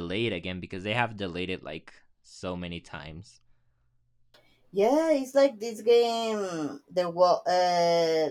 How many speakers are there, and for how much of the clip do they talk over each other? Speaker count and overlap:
2, no overlap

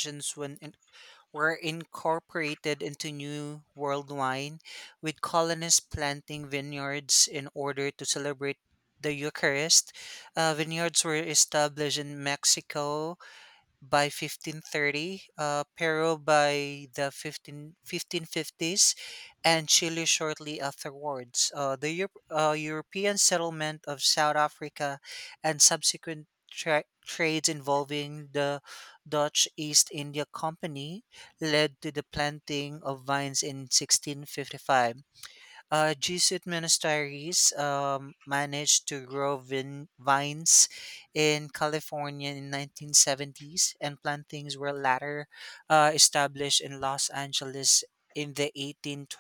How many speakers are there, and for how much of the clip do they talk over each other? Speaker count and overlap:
1, no overlap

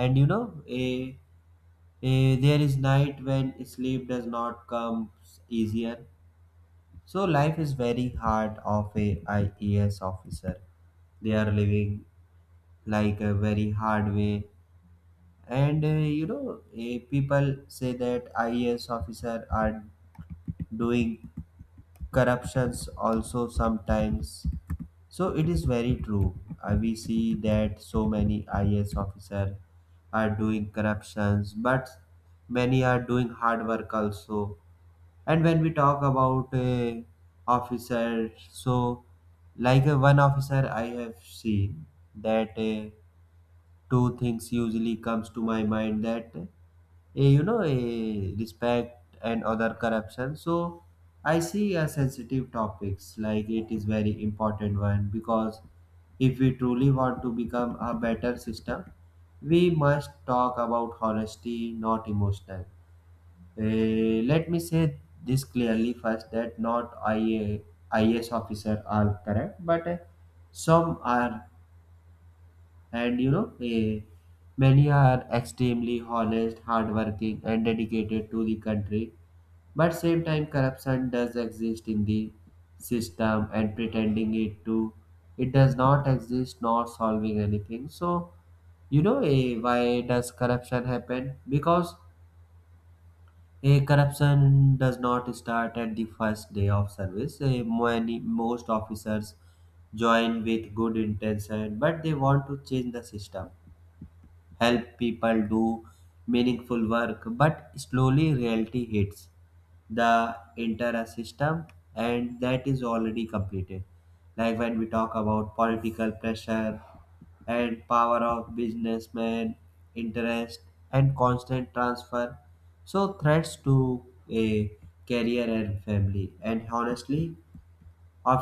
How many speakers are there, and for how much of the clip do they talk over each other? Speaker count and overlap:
1, no overlap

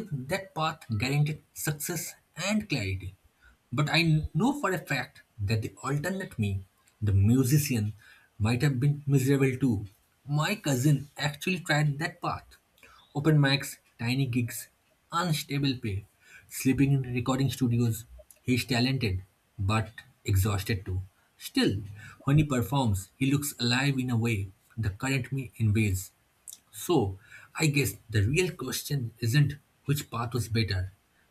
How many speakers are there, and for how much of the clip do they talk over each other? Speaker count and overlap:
1, no overlap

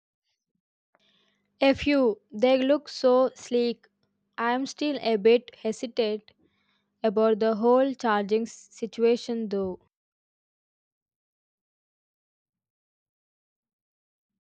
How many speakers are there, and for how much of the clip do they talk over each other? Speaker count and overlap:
1, no overlap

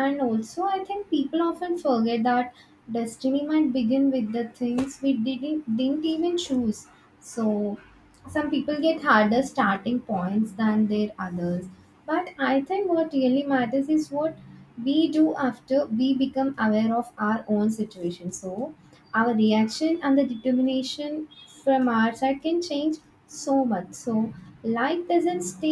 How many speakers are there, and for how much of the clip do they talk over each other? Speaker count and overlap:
1, no overlap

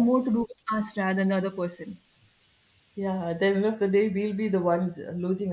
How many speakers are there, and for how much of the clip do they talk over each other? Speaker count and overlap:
2, no overlap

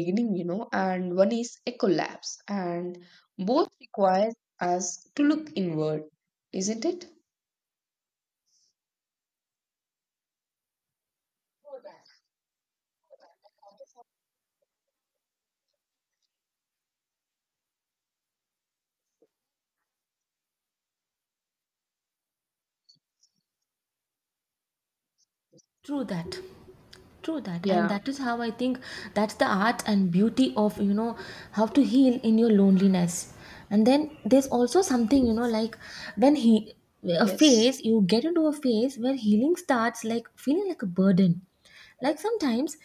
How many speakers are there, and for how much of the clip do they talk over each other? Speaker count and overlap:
2, about 1%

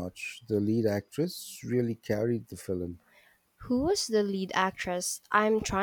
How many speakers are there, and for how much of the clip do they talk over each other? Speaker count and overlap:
2, no overlap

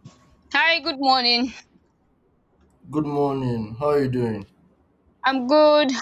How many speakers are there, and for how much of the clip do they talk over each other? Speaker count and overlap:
2, no overlap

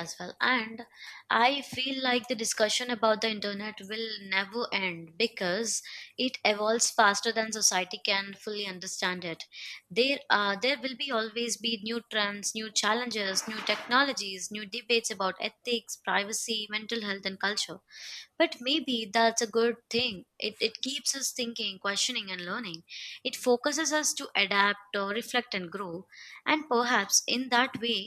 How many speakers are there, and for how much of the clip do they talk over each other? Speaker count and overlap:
1, no overlap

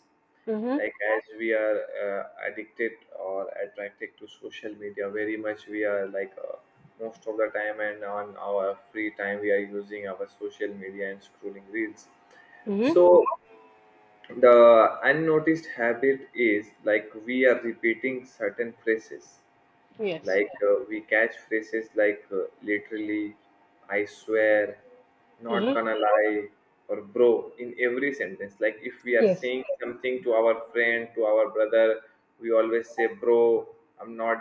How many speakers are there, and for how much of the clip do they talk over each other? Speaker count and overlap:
2, about 2%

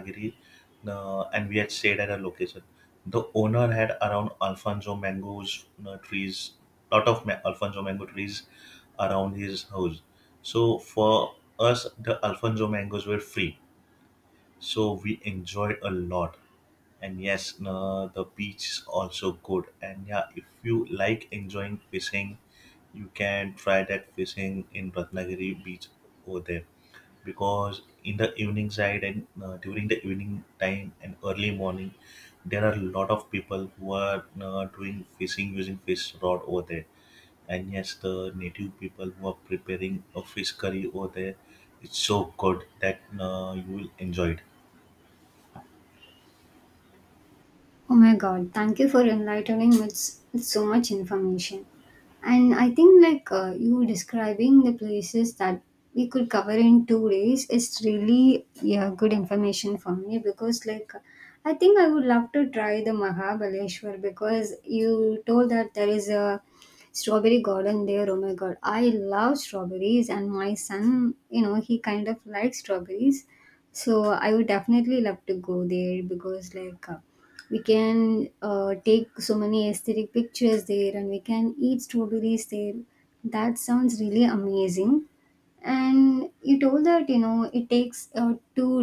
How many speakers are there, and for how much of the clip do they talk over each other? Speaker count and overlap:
2, no overlap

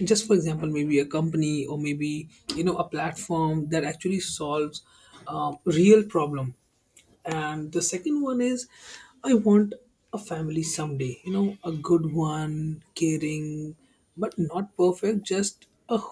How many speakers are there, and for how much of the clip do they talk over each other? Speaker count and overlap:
1, no overlap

